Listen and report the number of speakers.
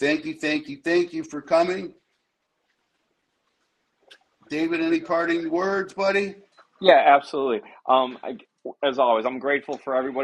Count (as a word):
two